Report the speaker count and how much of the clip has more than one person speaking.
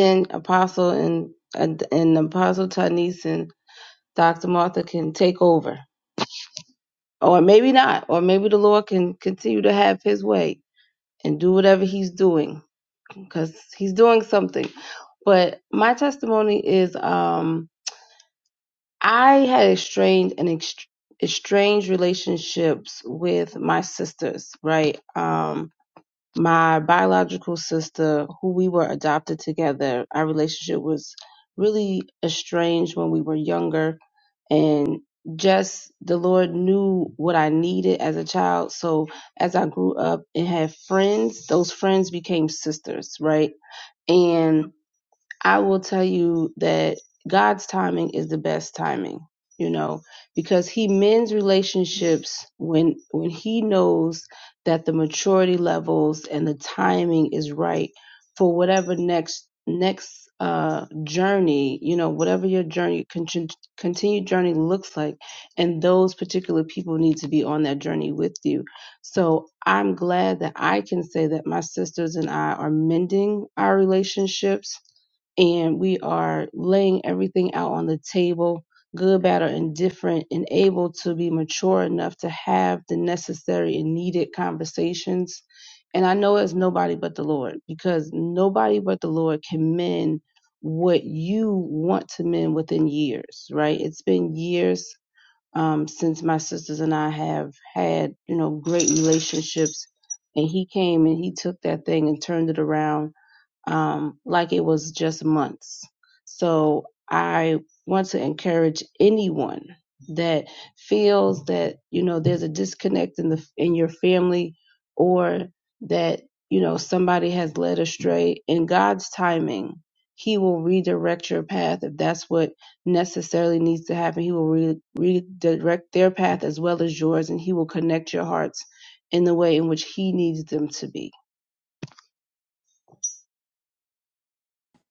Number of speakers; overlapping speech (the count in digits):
1, no overlap